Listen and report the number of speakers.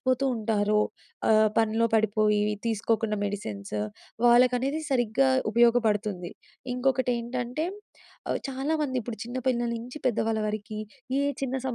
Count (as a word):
one